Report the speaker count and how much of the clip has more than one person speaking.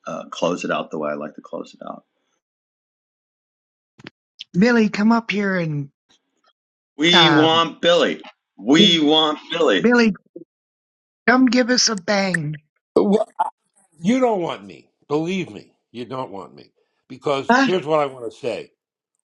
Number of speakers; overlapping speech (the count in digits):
3, about 4%